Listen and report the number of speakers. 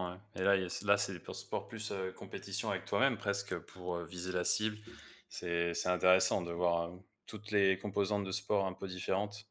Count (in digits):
1